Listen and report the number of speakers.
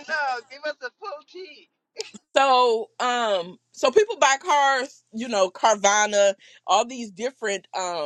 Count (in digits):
2